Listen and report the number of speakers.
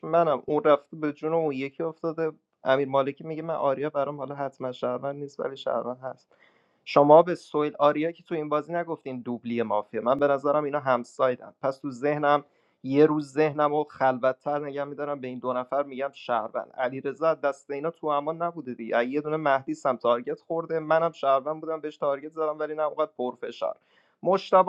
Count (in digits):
1